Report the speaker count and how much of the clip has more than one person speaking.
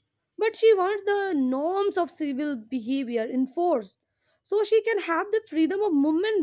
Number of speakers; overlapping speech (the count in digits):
1, no overlap